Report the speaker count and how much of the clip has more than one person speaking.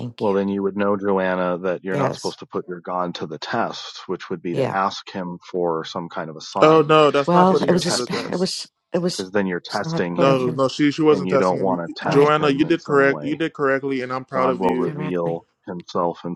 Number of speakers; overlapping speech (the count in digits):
3, about 38%